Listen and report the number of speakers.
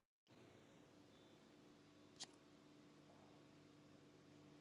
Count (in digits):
0